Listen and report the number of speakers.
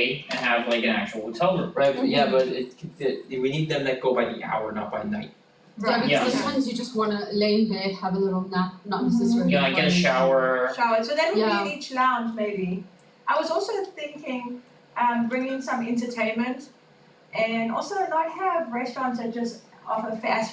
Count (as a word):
four